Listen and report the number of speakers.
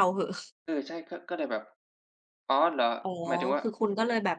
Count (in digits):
2